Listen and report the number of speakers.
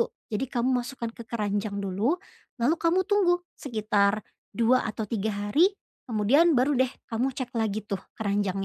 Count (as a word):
one